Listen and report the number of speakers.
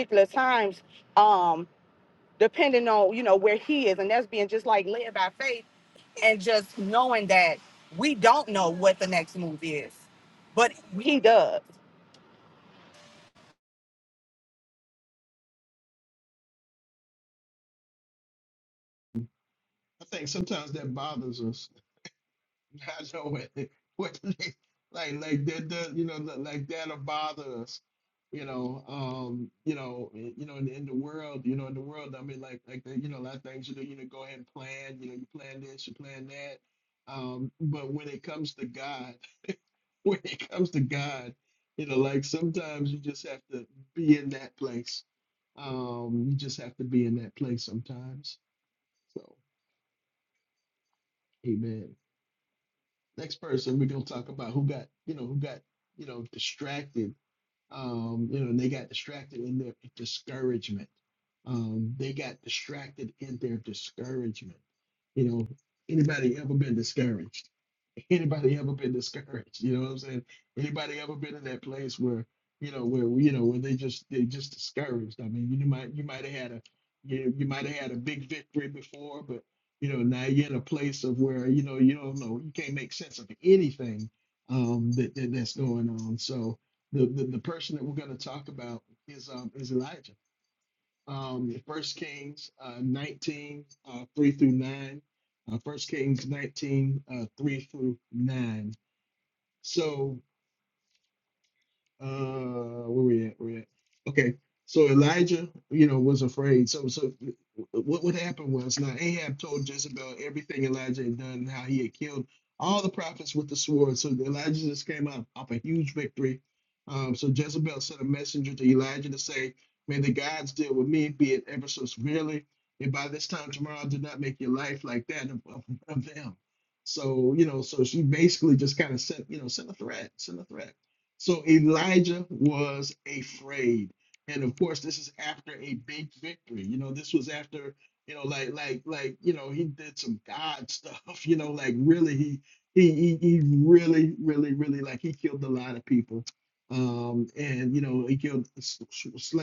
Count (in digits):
2